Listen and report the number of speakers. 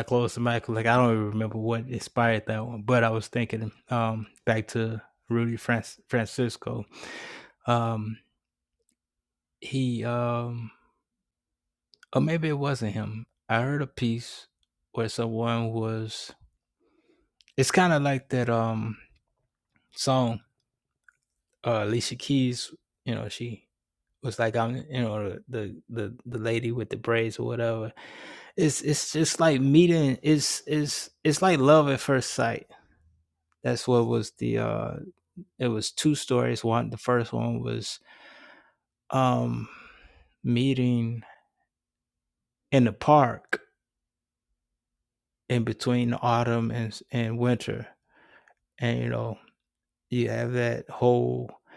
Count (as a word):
one